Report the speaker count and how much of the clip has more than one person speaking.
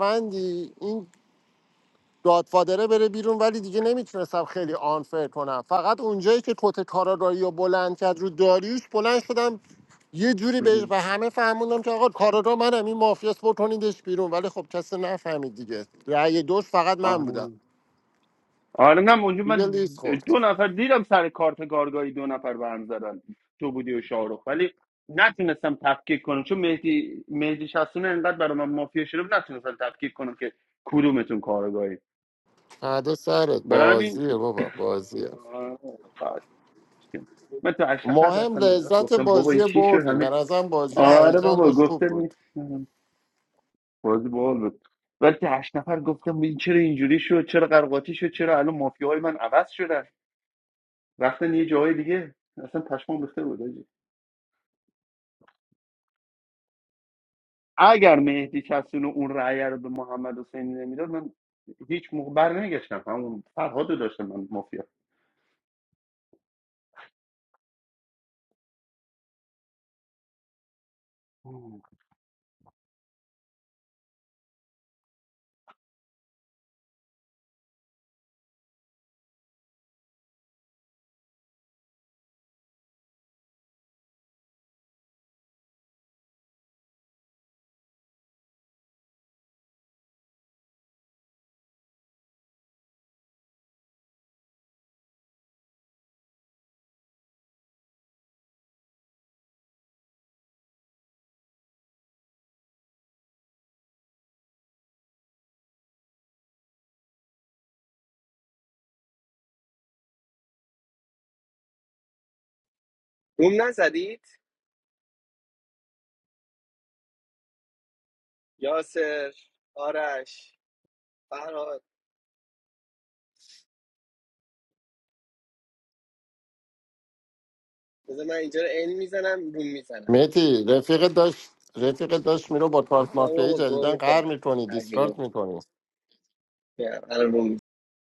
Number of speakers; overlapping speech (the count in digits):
3, about 5%